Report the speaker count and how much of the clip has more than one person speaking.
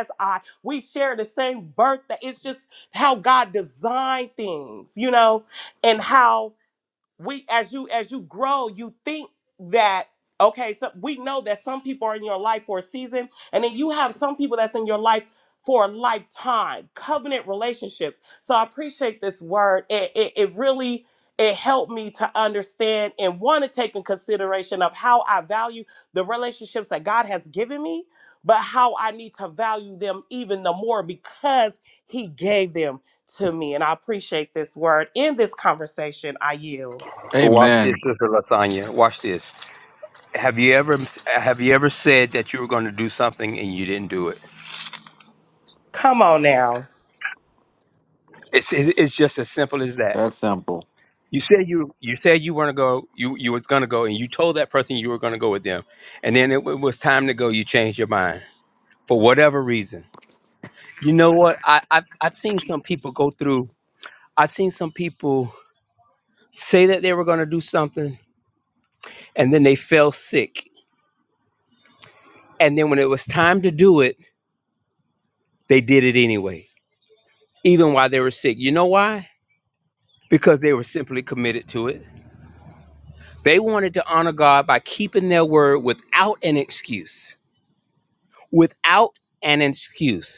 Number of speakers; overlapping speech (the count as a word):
three, about 1%